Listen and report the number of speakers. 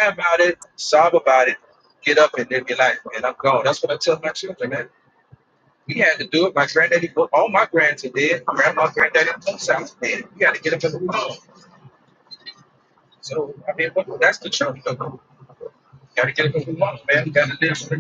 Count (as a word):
one